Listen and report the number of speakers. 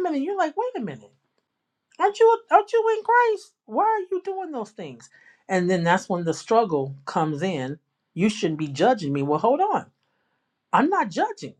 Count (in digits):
1